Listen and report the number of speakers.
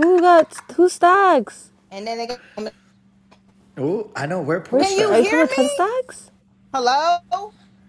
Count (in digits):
3